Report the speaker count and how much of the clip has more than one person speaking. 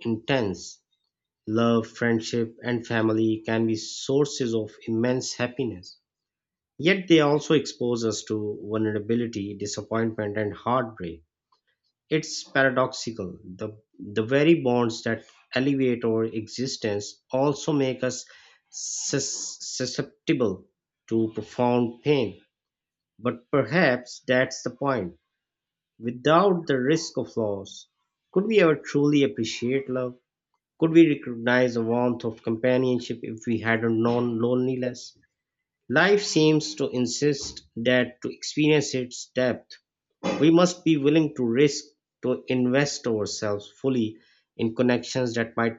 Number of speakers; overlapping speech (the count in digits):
1, no overlap